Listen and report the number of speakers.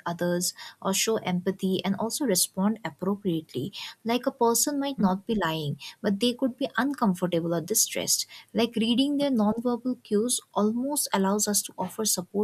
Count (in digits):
1